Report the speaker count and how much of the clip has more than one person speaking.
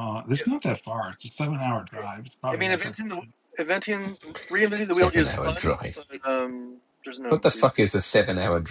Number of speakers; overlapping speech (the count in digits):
3, about 17%